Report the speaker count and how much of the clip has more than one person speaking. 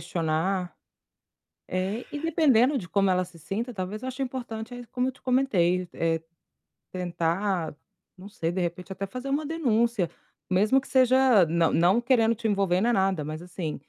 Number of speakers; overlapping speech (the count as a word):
one, no overlap